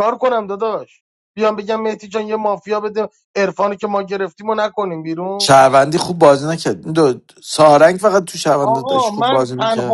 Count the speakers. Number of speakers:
2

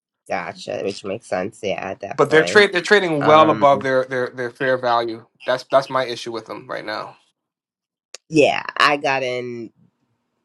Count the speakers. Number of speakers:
2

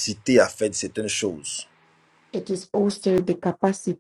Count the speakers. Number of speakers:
2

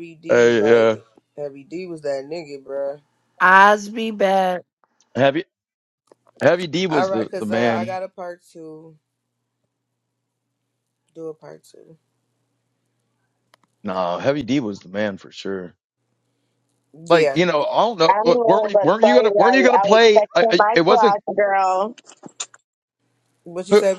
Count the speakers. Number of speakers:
4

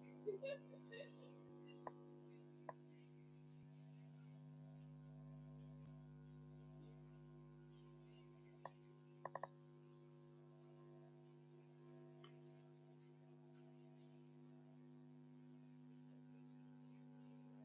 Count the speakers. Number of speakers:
0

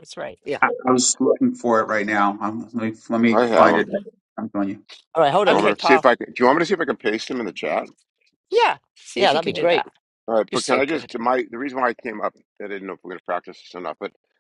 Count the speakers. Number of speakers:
4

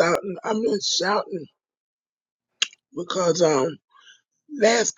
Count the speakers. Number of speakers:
1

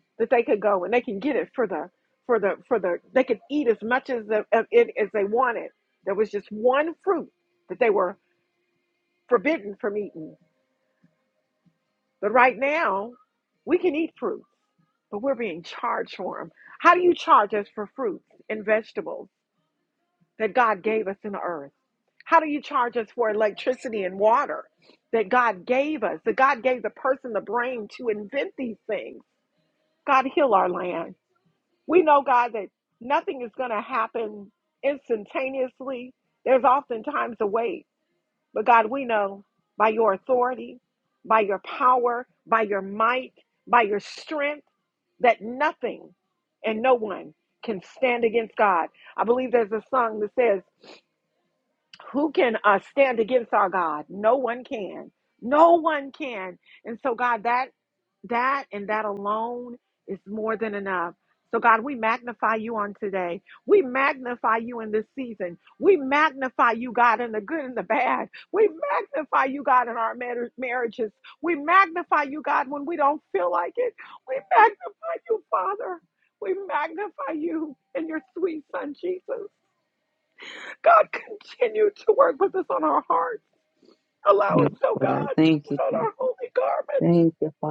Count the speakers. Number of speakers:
2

